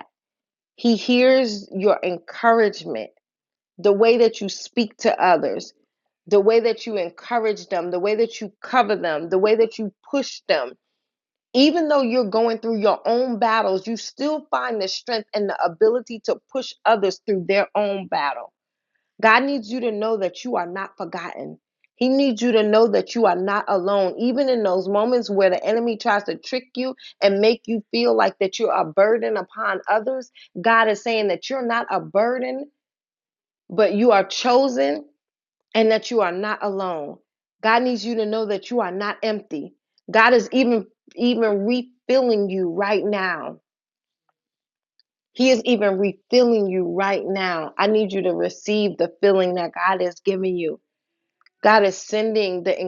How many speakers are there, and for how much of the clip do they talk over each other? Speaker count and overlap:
1, no overlap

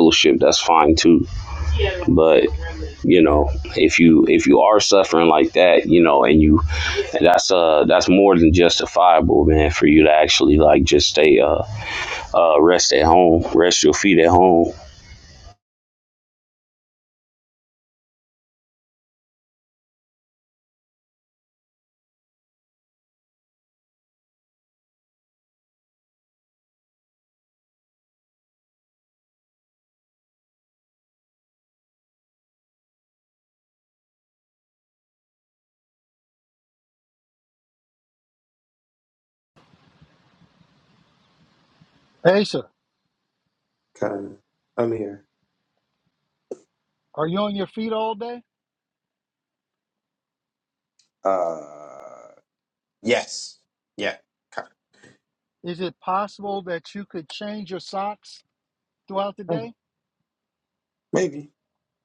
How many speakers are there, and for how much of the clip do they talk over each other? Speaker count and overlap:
3, under 1%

